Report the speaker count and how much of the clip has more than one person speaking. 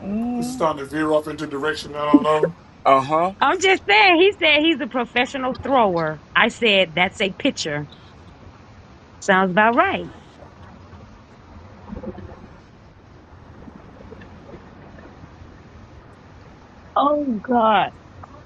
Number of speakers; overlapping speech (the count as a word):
three, about 1%